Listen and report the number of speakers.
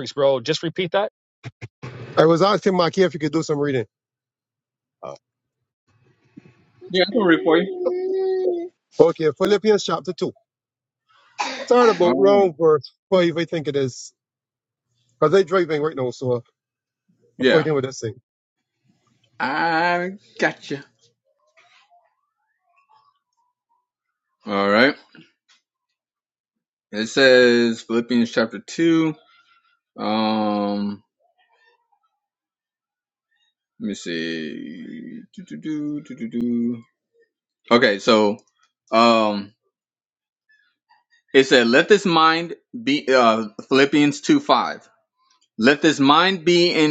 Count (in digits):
3